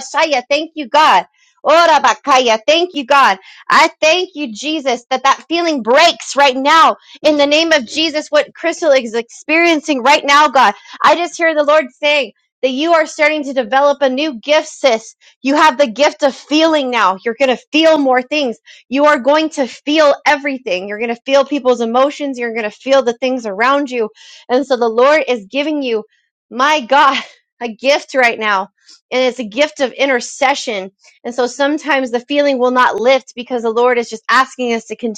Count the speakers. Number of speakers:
one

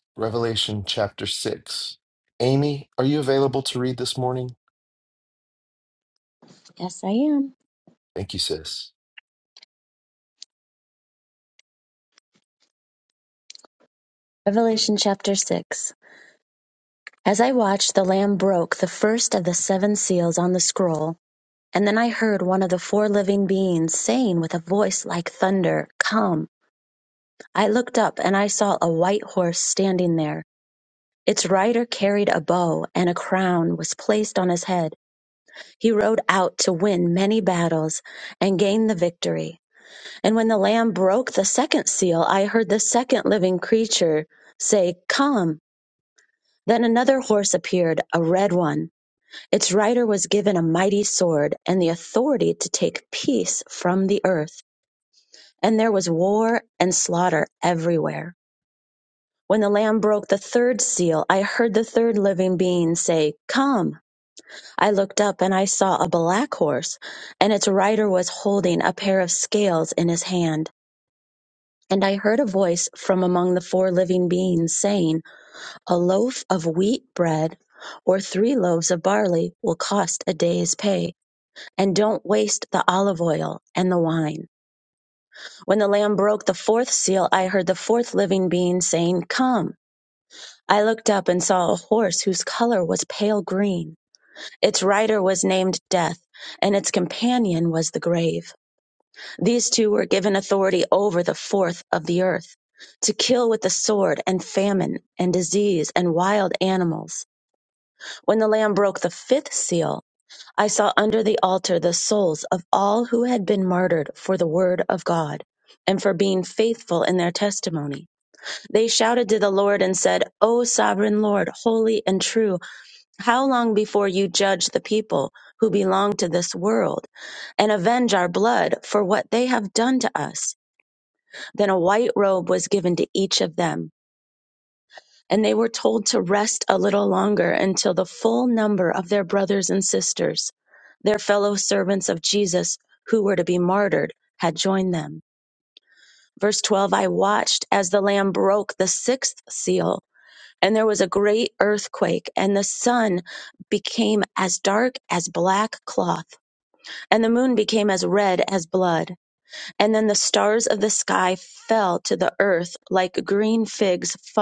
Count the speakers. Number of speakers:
two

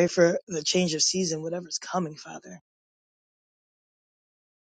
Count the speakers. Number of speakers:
one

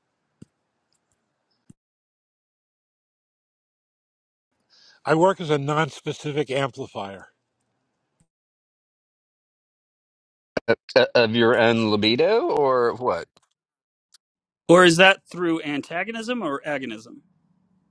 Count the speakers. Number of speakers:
three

